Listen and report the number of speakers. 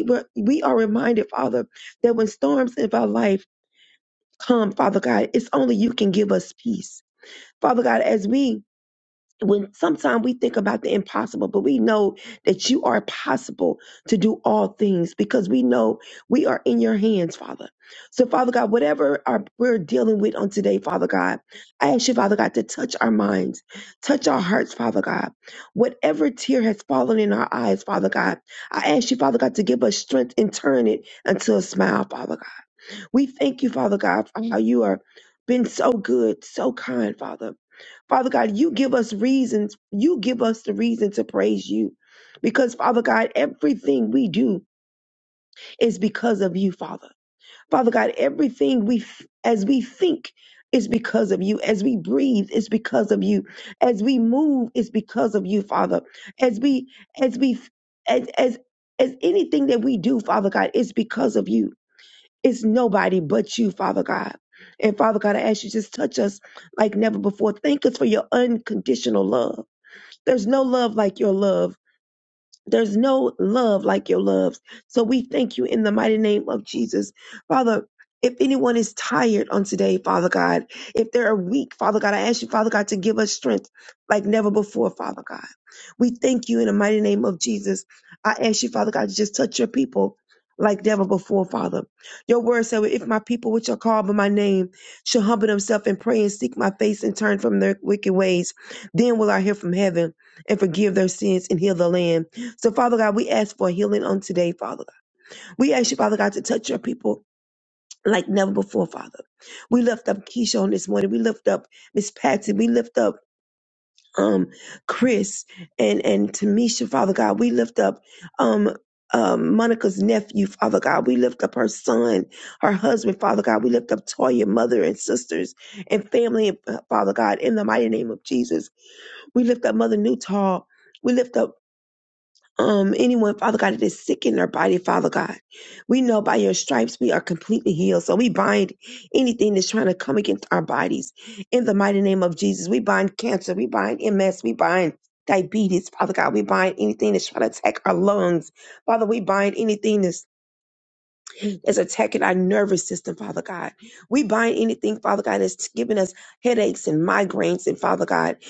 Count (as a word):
one